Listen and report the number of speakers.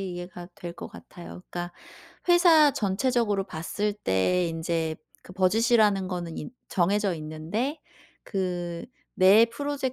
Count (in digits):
1